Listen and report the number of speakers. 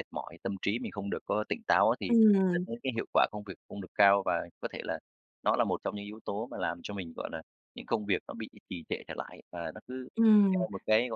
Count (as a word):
two